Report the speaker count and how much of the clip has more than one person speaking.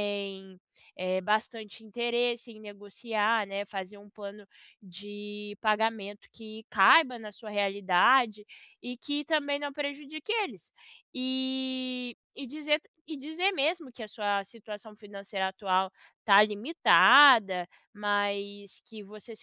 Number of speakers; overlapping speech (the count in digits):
1, no overlap